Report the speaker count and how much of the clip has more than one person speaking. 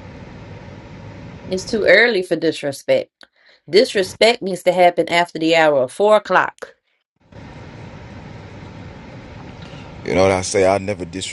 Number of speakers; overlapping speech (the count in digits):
2, no overlap